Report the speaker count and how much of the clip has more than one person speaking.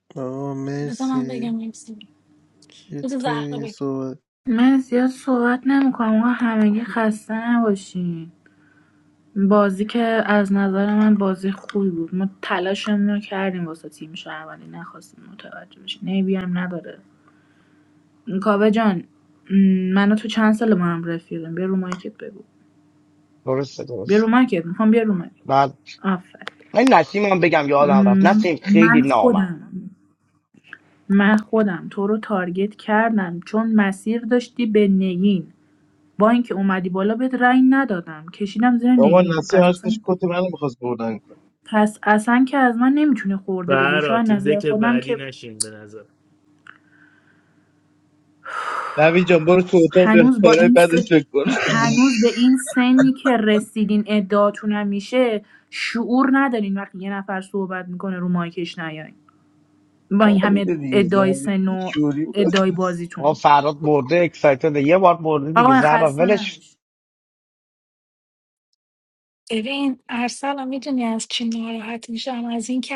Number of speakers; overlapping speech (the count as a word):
six, about 12%